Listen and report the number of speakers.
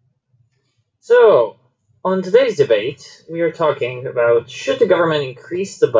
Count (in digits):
1